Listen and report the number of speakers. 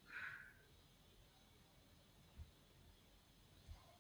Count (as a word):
zero